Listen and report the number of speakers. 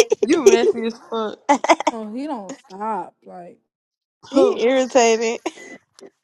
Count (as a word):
three